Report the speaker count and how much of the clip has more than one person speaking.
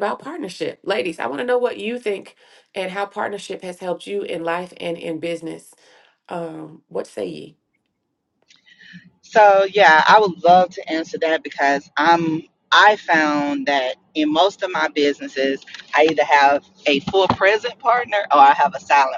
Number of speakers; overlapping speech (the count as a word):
two, no overlap